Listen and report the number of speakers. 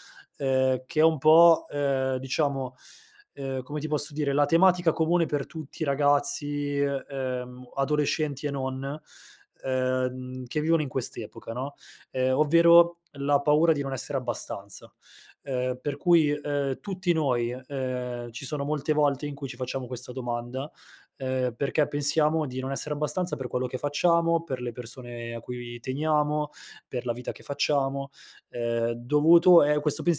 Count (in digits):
1